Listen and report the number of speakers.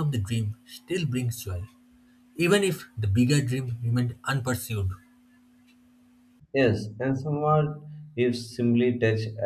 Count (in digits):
2